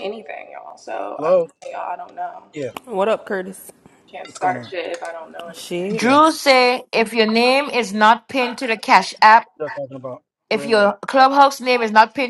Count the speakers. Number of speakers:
4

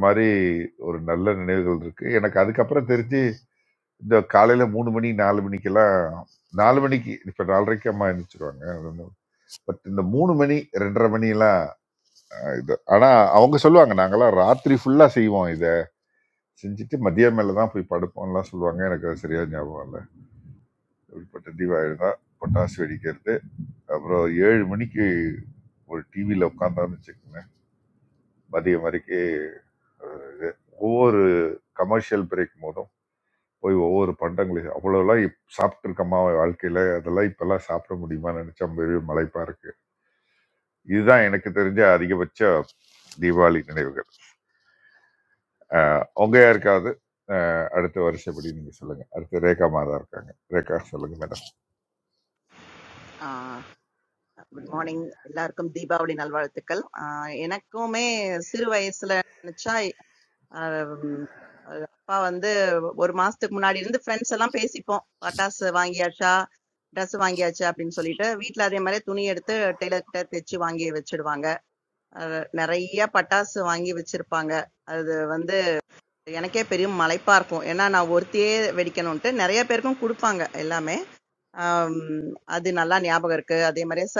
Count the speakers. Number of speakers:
2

